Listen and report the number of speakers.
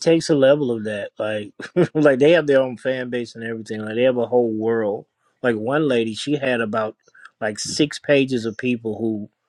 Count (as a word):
one